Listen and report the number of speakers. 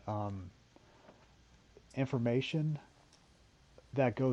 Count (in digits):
1